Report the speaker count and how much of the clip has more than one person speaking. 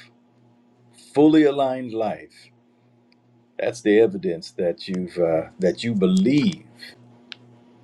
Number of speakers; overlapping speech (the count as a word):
one, no overlap